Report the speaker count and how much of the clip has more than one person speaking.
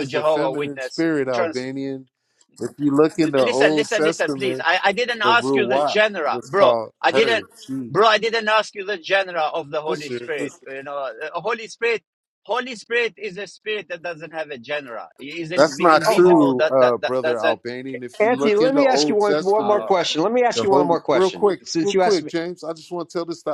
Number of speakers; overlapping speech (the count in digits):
3, about 43%